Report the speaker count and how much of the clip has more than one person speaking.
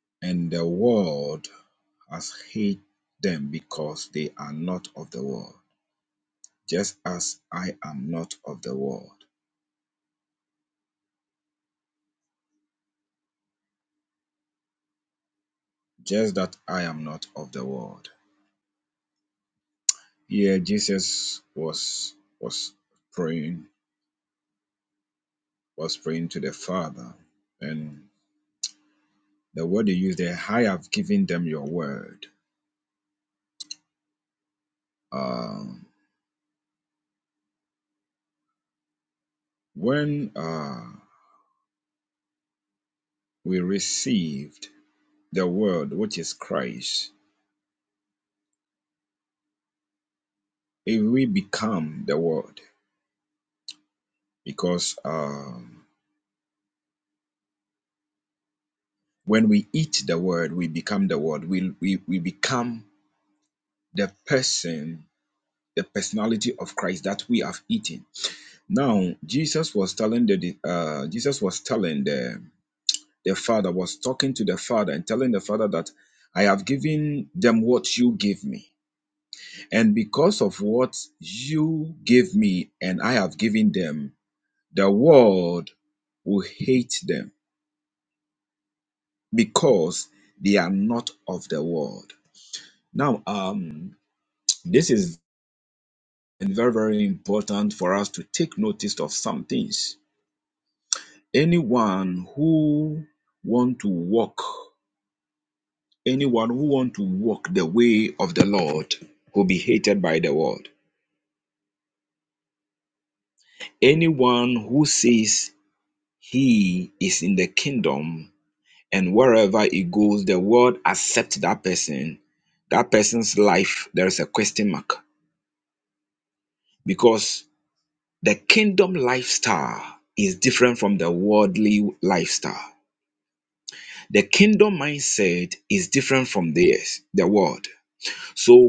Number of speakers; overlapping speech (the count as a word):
one, no overlap